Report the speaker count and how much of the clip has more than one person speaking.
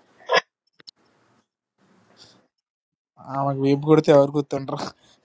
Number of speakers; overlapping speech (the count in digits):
1, no overlap